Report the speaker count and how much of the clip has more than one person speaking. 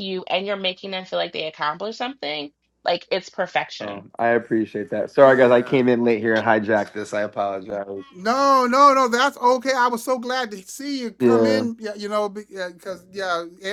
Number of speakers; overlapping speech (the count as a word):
three, about 9%